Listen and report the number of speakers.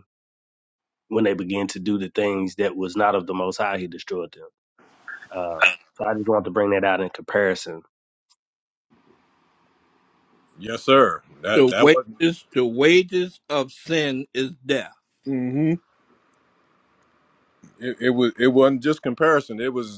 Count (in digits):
3